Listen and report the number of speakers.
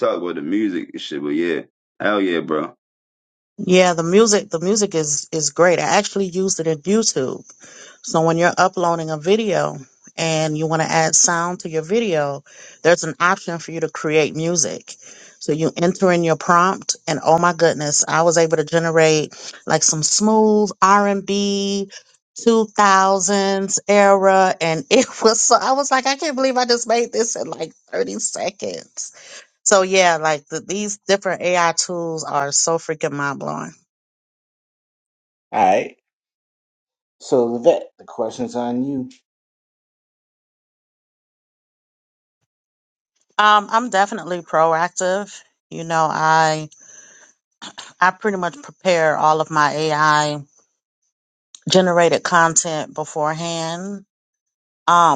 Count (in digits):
3